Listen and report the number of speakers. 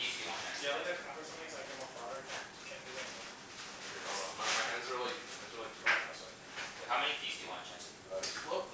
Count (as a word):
three